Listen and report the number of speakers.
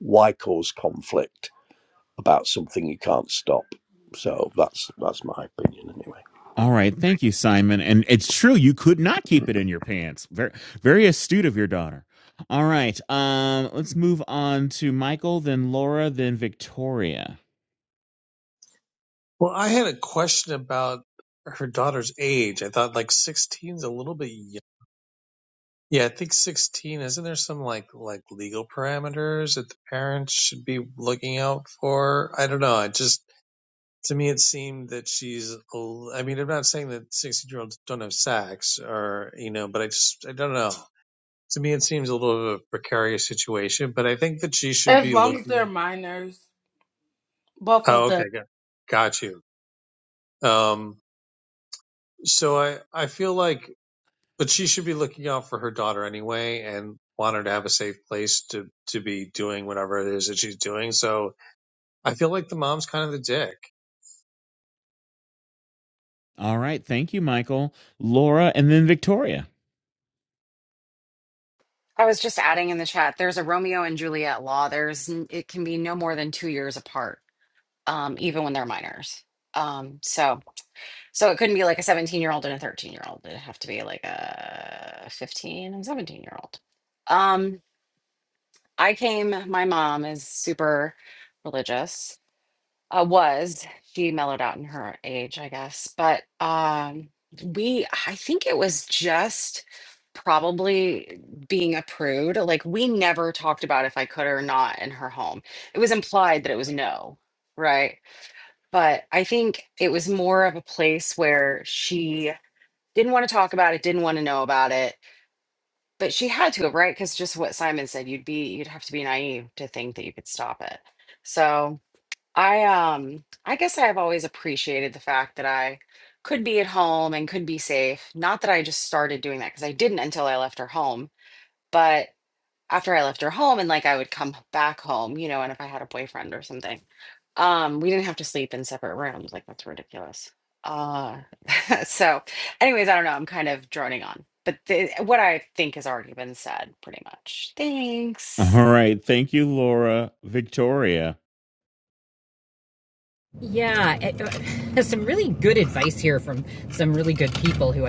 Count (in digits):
6